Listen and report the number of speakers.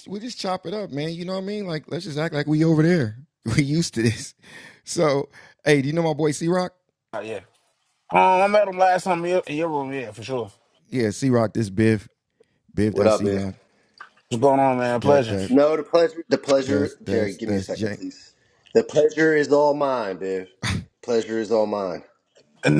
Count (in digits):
3